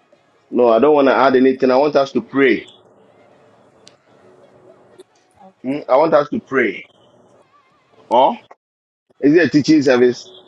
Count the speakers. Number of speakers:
one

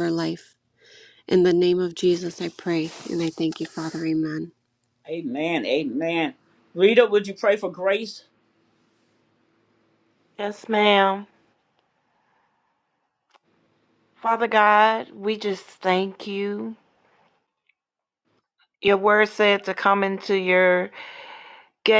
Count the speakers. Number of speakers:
three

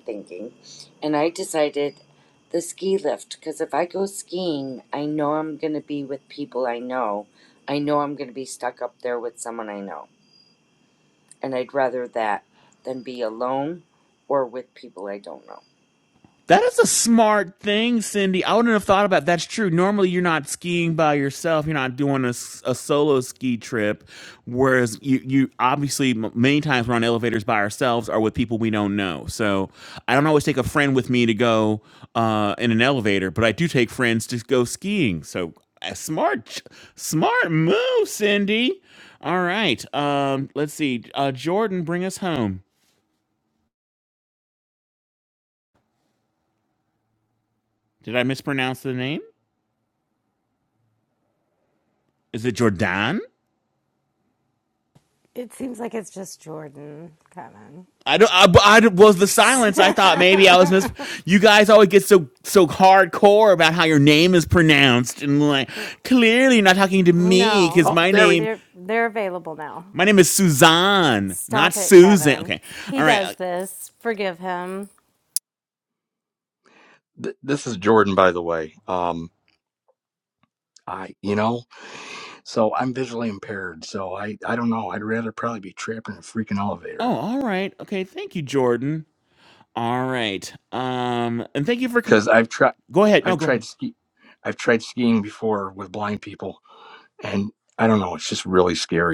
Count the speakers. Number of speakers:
four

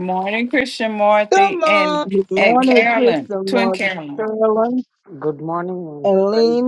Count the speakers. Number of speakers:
three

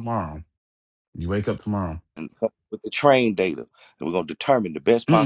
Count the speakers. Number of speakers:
two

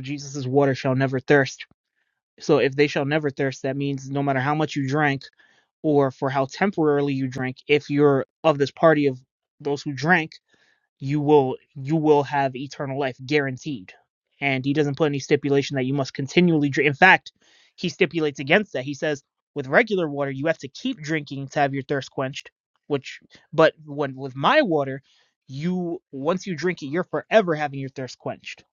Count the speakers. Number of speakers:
one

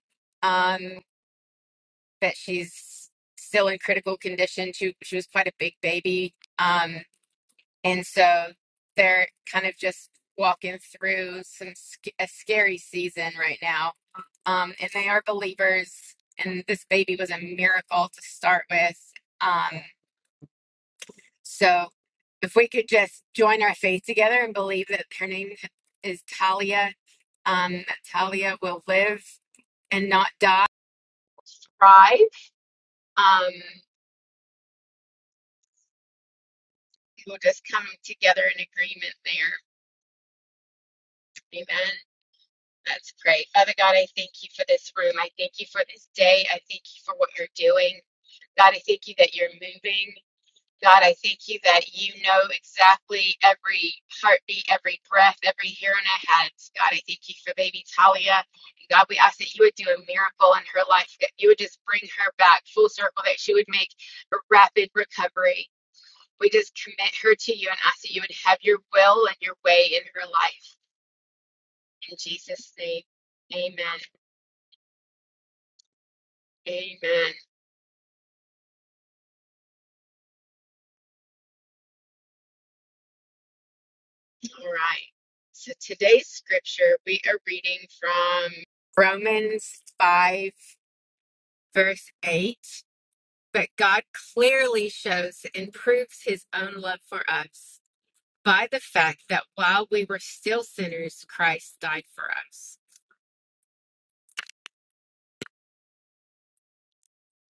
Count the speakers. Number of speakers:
one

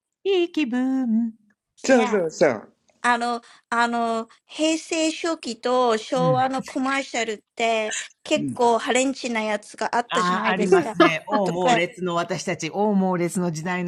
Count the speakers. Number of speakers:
three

